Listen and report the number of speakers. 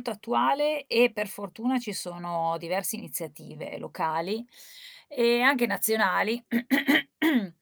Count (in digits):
1